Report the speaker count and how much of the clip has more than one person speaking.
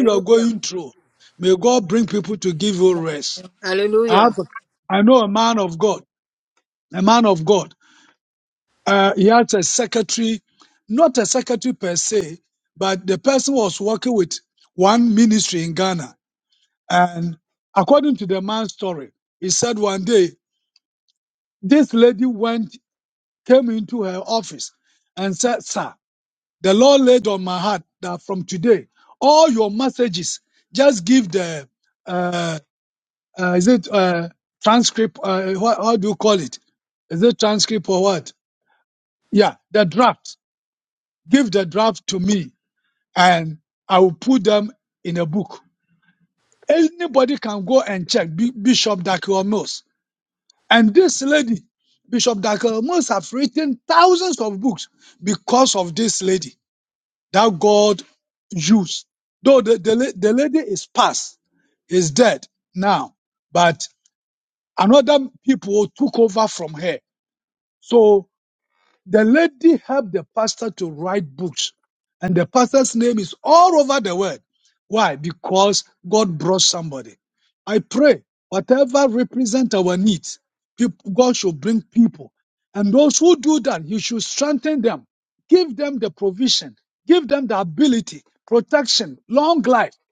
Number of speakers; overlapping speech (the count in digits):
2, about 1%